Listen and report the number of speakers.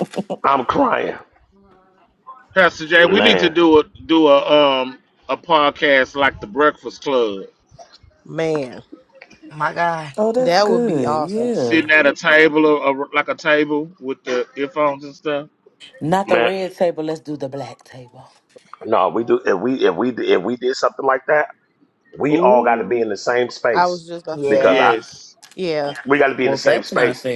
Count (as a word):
five